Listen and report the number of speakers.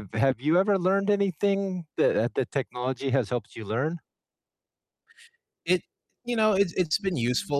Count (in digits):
2